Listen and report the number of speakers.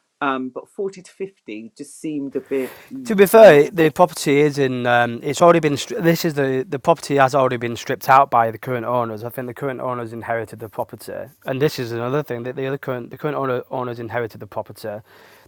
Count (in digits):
2